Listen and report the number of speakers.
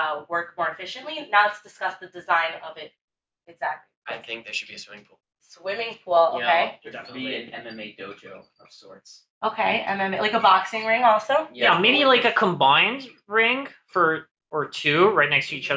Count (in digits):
4